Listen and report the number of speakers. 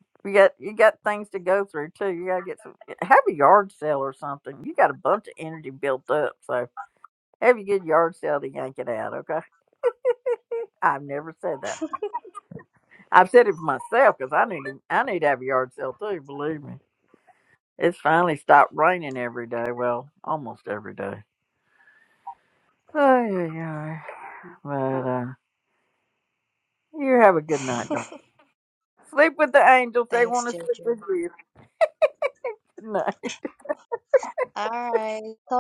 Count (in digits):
2